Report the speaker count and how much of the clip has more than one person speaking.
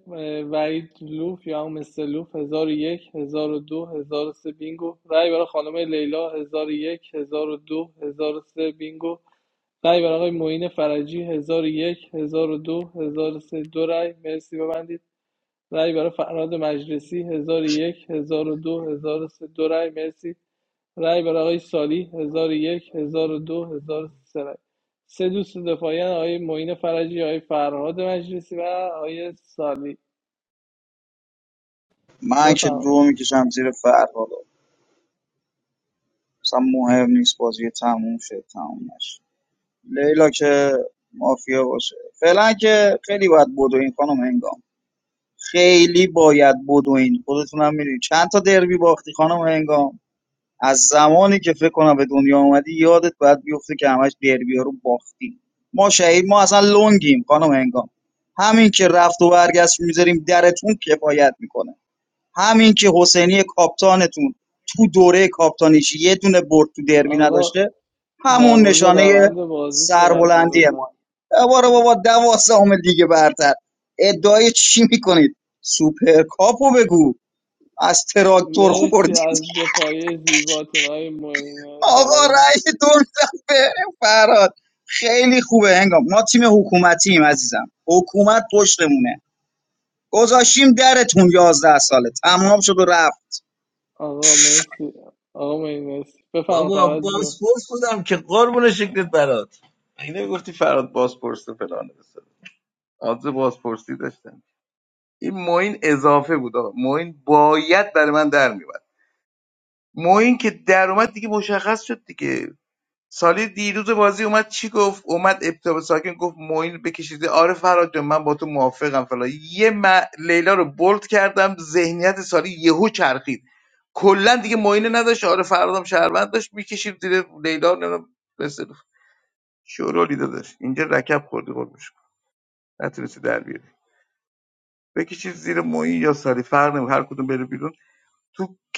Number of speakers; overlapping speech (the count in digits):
3, about 3%